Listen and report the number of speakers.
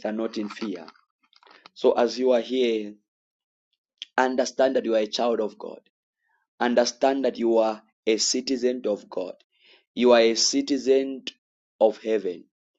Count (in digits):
1